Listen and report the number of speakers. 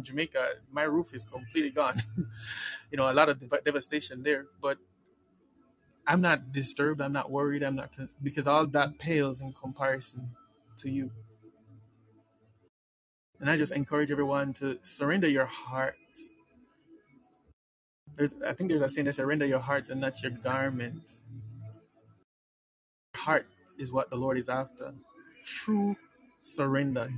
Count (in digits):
1